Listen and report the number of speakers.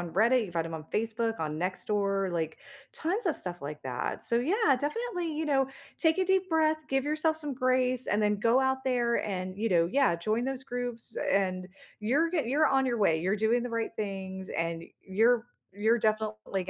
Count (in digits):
1